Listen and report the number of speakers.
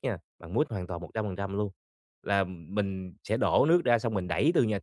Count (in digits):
1